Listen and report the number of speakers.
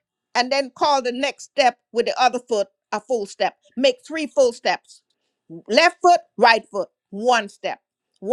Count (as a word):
one